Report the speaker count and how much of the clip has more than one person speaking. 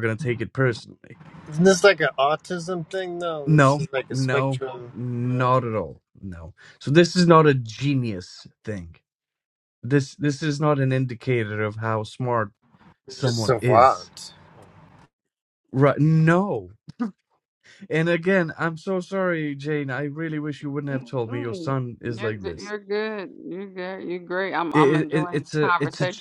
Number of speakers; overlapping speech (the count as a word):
three, about 20%